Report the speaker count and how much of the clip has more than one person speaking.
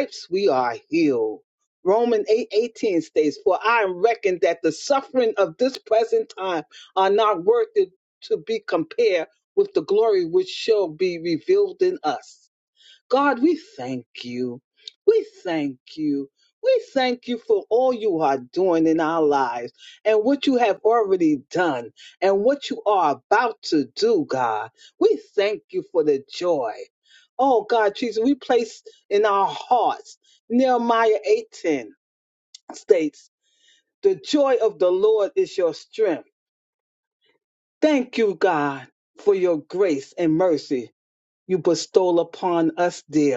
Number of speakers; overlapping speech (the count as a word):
one, no overlap